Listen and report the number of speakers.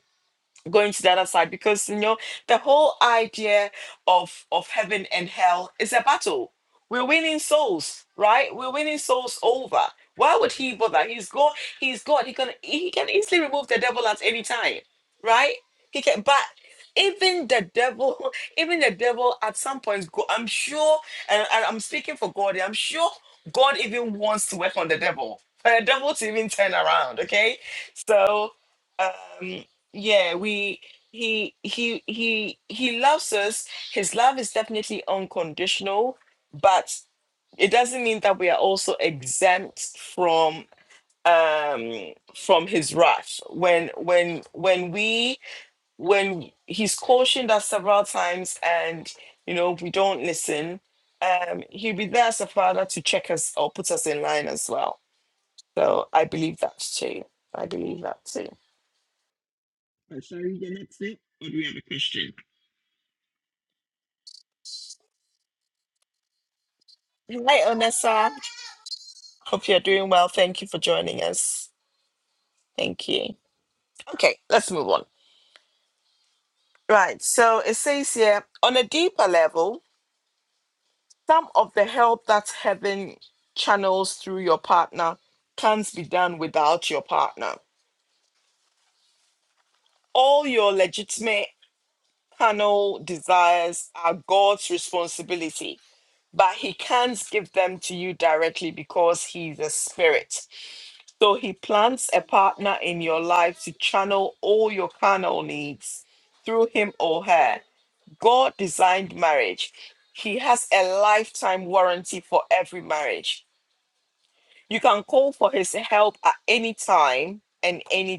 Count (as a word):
one